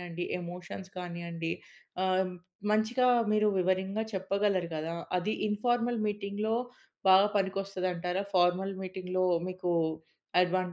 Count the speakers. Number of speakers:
1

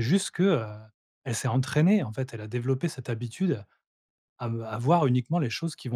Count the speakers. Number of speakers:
1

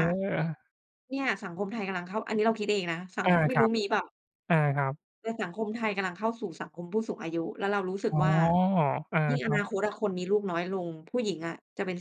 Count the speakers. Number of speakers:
2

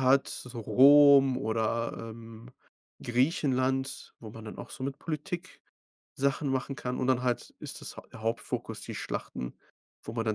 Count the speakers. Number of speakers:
1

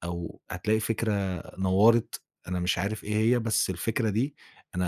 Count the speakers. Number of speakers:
1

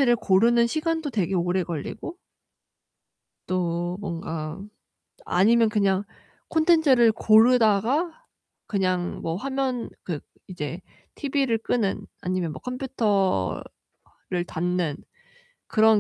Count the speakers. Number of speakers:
1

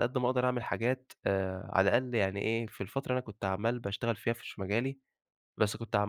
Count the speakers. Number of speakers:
1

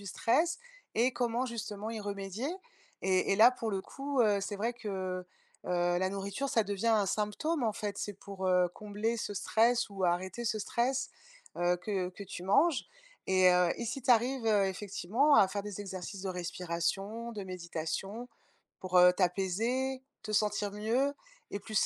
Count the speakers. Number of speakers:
1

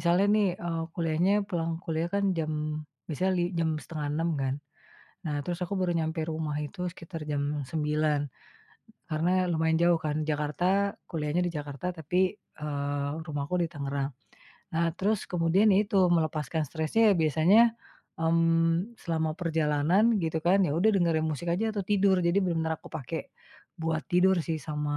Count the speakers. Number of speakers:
1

